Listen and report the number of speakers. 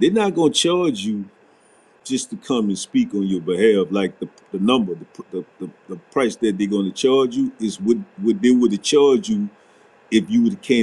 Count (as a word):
one